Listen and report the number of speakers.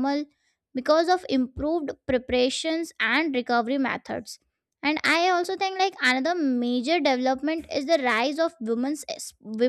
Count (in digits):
1